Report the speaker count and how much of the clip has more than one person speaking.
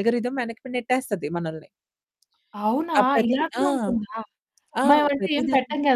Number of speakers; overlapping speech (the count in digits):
2, about 31%